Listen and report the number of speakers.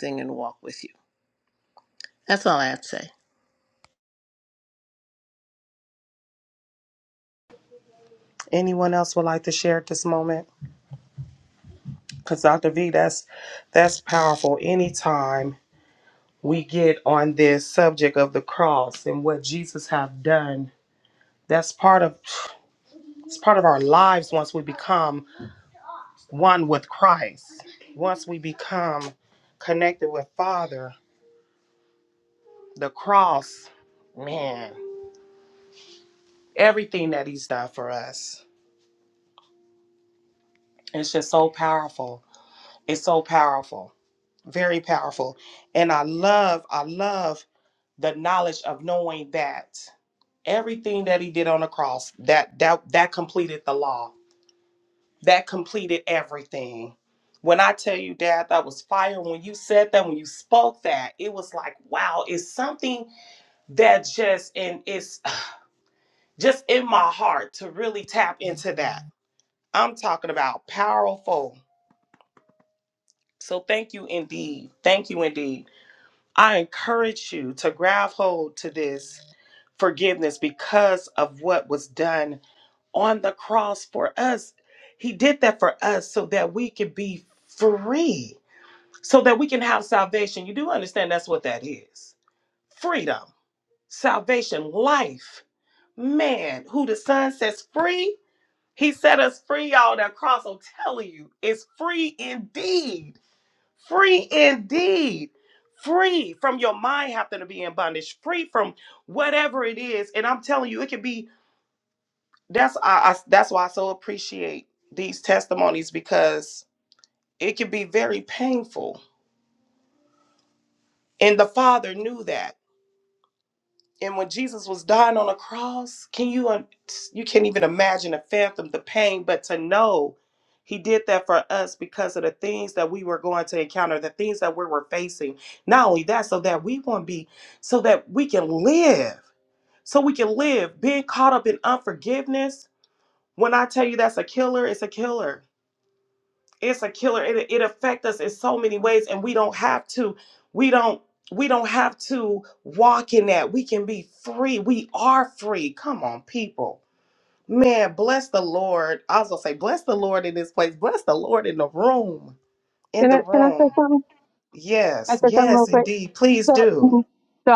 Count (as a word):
three